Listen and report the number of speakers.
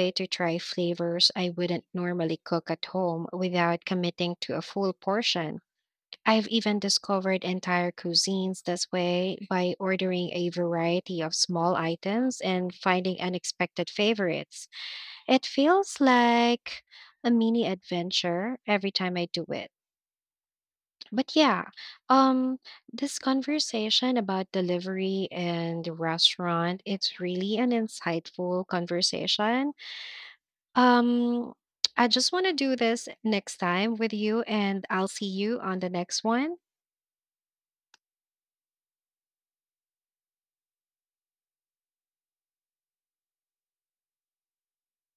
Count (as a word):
one